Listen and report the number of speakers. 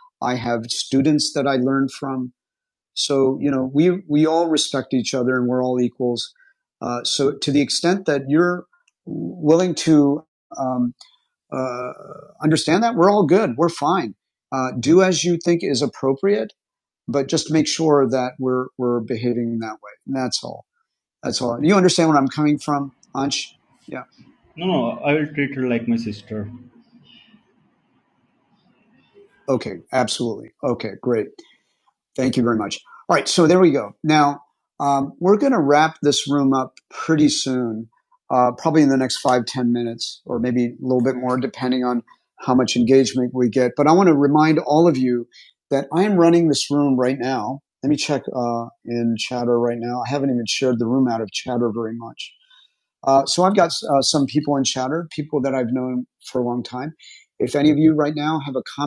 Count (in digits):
2